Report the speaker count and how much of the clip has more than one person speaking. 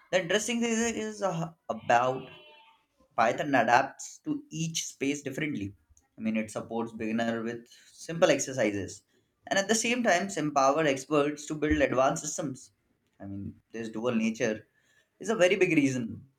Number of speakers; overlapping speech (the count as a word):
one, no overlap